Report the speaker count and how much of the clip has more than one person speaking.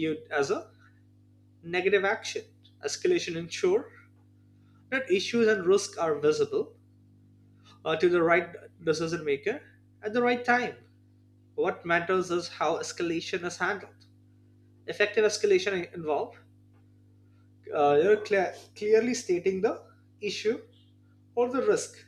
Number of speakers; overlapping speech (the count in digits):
1, no overlap